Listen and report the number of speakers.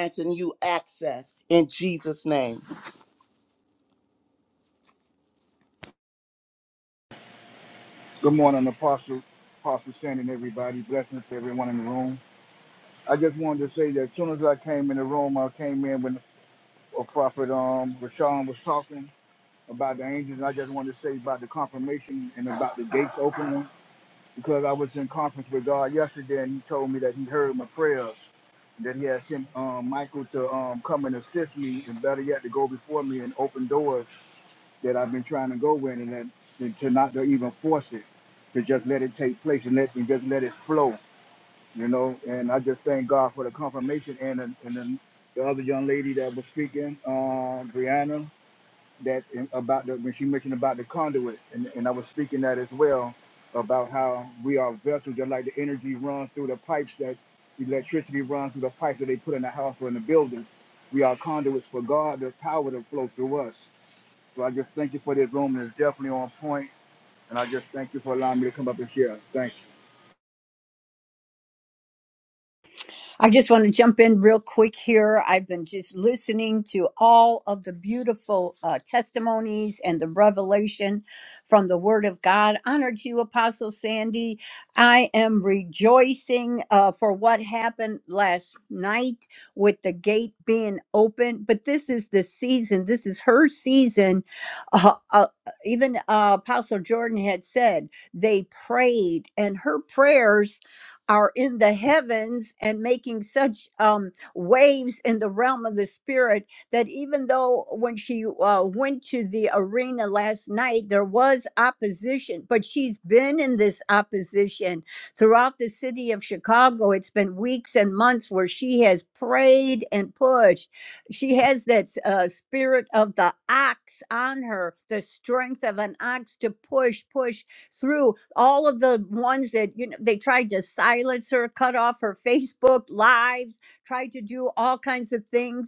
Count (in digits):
3